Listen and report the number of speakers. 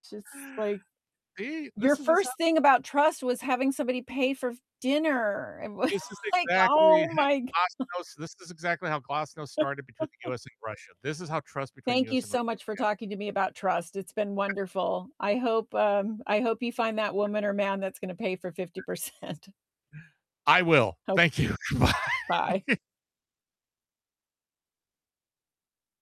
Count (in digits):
2